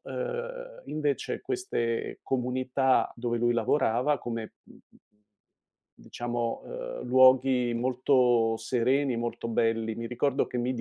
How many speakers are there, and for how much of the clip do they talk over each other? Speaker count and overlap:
one, no overlap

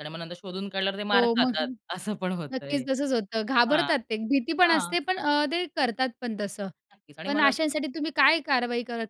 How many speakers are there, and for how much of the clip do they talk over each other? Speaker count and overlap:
two, about 19%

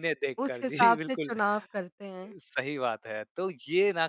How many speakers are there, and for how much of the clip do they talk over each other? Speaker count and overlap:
two, about 23%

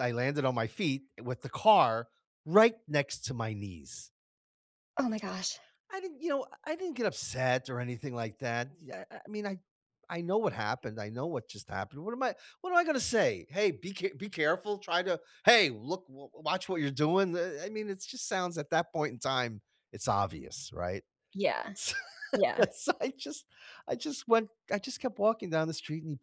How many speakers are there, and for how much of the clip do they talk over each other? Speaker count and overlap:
two, no overlap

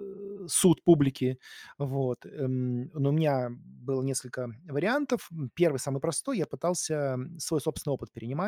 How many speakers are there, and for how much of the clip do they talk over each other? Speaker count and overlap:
one, no overlap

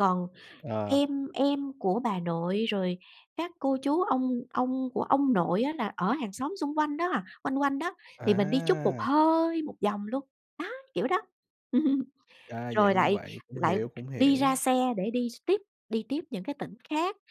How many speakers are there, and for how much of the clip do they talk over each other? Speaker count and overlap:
two, about 11%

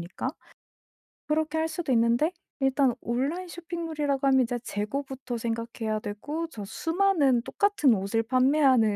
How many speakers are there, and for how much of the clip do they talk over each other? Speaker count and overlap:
one, no overlap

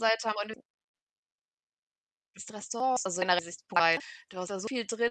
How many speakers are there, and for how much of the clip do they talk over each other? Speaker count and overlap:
one, no overlap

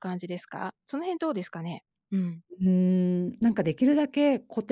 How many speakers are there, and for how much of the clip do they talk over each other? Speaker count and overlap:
two, no overlap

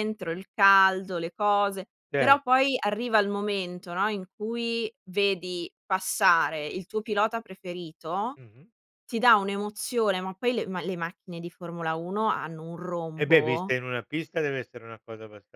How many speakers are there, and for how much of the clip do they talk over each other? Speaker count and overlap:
two, about 4%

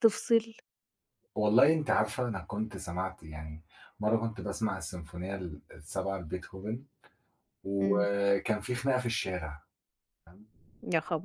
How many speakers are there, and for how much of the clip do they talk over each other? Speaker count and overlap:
two, about 2%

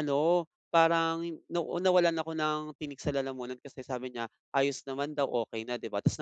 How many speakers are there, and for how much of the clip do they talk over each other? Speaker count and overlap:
one, no overlap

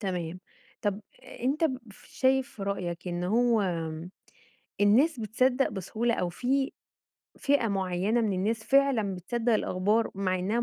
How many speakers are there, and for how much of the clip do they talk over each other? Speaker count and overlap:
one, no overlap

